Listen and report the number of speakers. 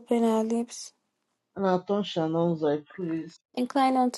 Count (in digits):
2